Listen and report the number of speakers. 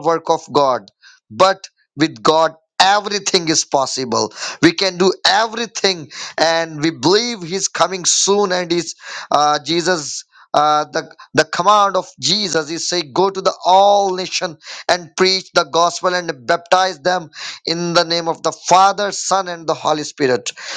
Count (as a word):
one